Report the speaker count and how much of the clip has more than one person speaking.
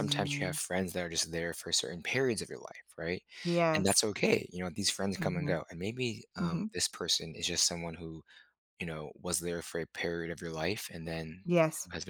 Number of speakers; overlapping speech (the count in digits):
2, about 11%